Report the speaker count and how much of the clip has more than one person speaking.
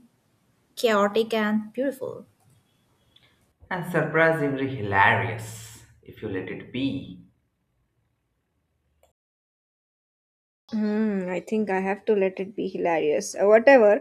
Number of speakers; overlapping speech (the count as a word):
three, no overlap